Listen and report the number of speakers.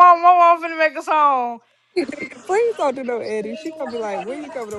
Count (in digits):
2